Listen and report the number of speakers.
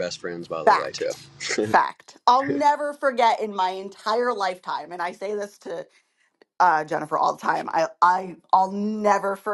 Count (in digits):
2